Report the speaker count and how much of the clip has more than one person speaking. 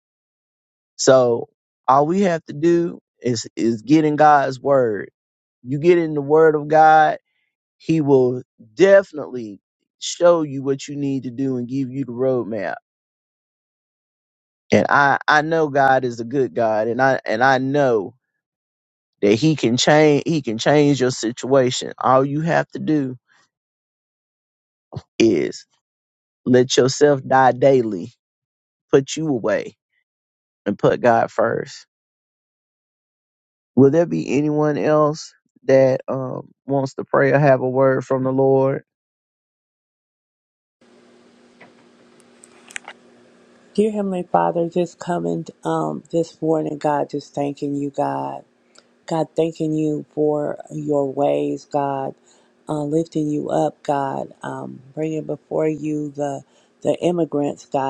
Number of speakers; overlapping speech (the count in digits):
2, no overlap